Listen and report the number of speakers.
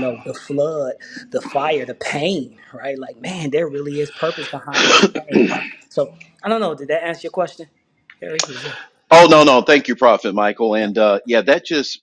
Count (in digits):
2